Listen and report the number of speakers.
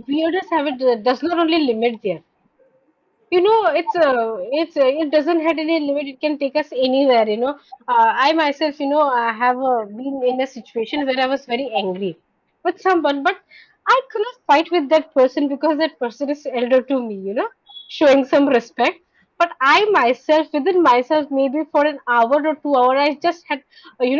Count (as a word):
one